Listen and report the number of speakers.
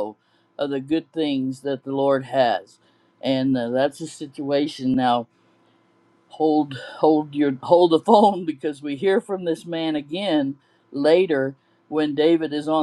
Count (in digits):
1